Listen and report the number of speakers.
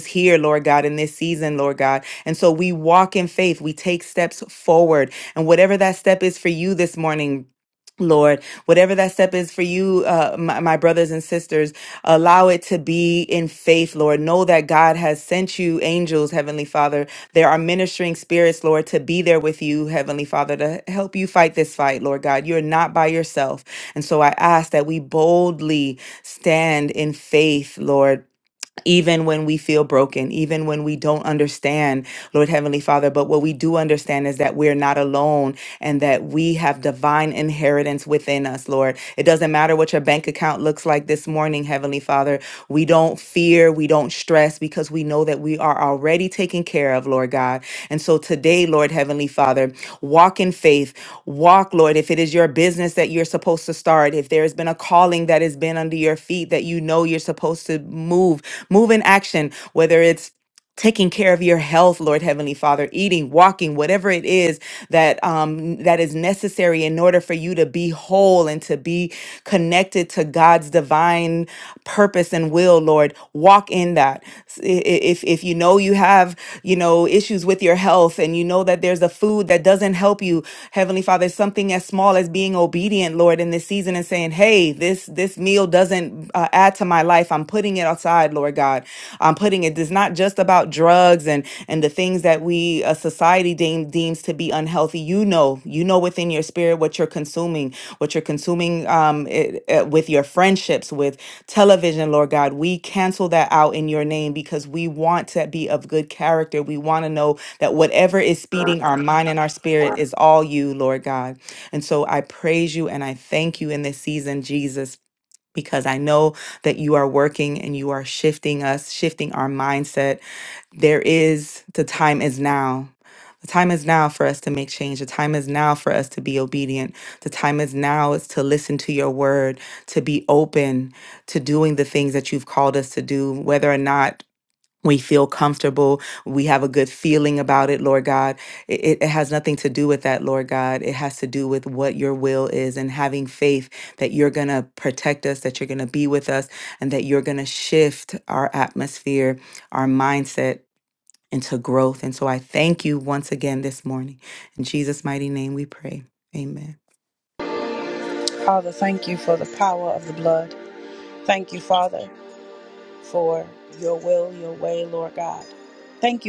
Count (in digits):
2